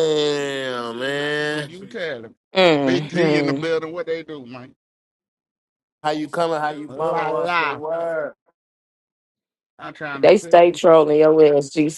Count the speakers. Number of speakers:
three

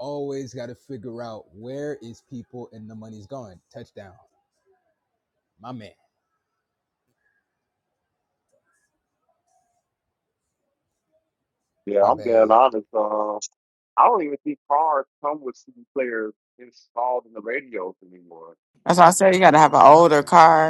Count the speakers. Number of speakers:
three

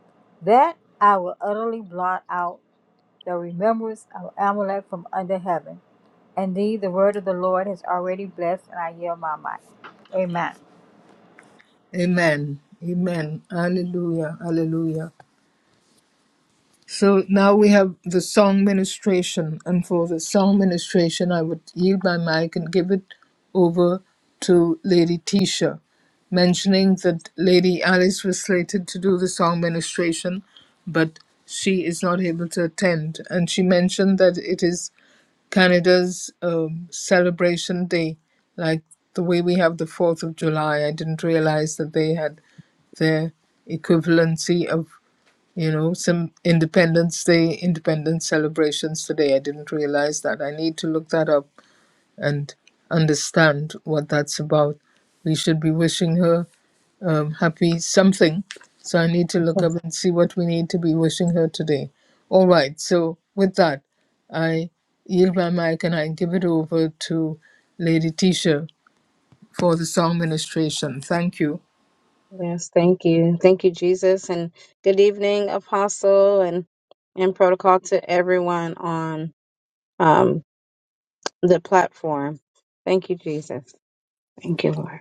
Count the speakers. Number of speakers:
three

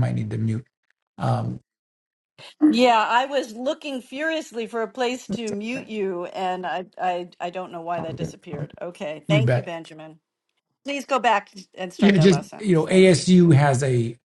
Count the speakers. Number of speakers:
two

